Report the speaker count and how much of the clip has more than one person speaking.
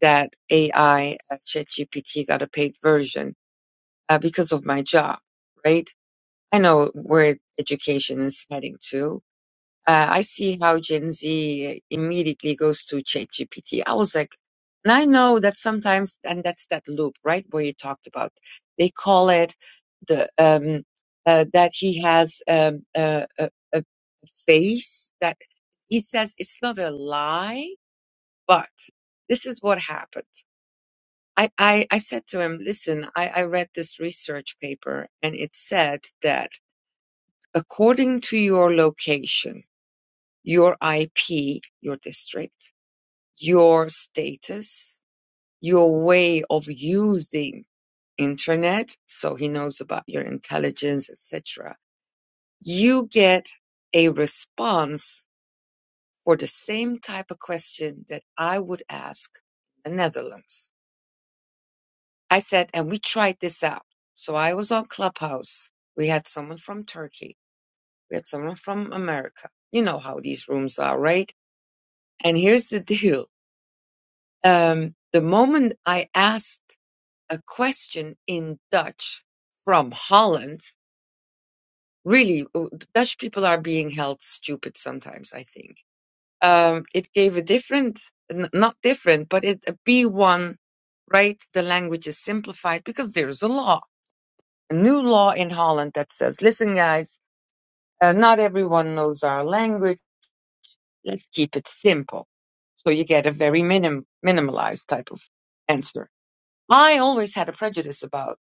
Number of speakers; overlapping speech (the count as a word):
one, no overlap